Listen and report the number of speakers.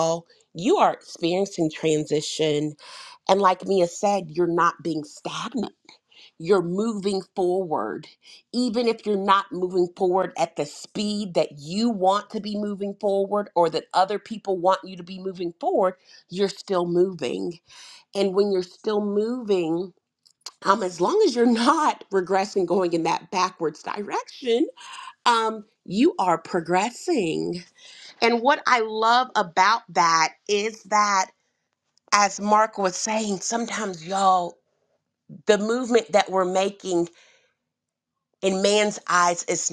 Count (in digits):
1